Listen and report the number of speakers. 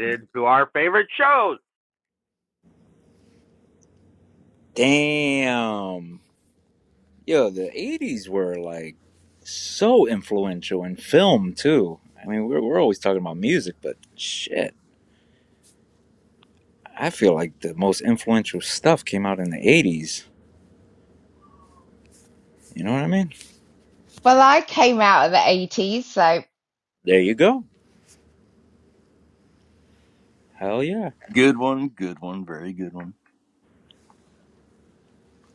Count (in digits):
4